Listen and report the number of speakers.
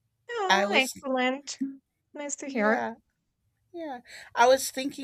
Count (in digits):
2